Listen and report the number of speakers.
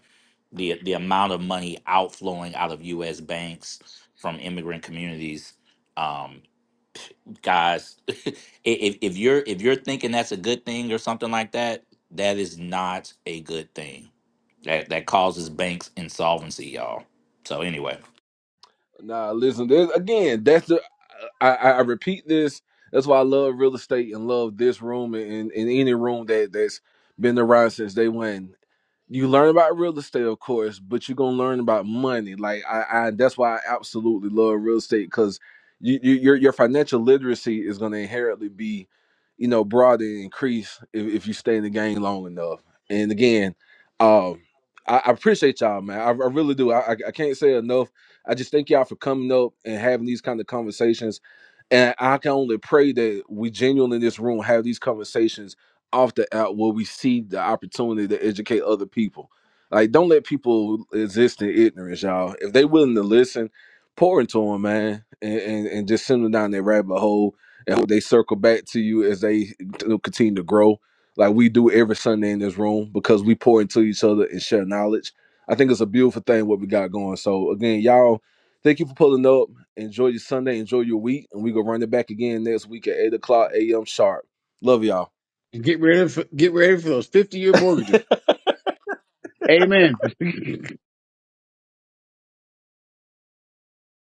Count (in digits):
3